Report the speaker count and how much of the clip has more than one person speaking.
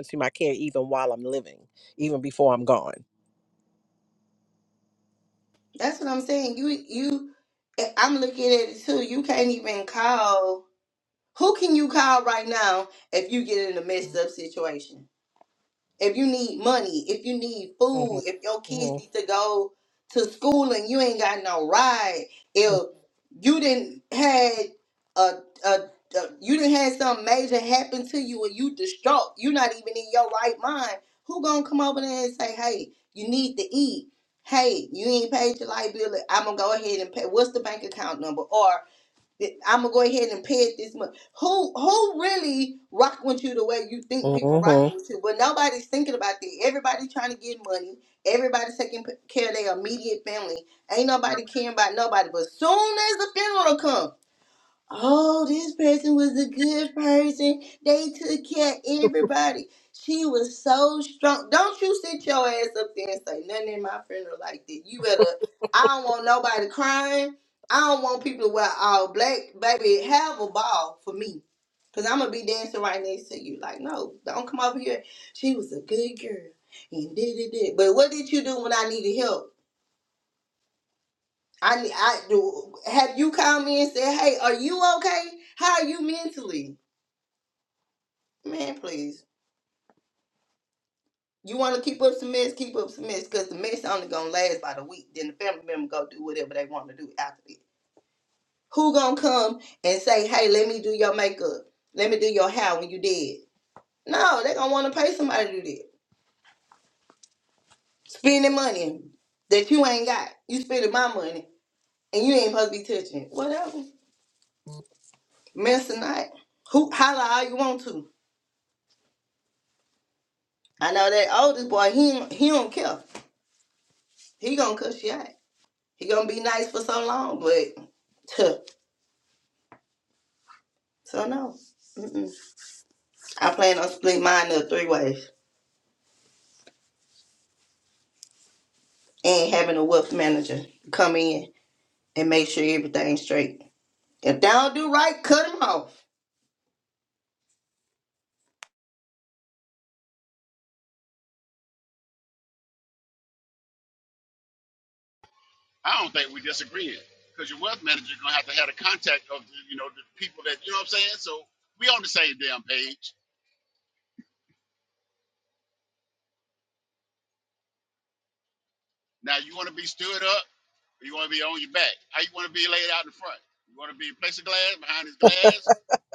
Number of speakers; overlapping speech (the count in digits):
3, about 1%